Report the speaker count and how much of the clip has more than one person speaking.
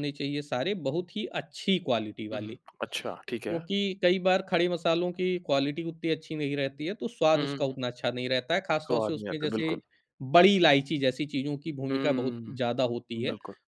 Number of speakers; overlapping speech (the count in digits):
2, about 18%